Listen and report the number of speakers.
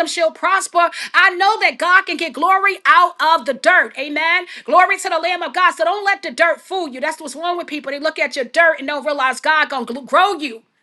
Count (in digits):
1